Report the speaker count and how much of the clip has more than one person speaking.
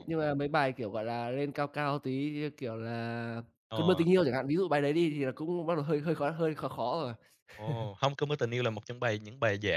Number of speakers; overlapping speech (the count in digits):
2, about 3%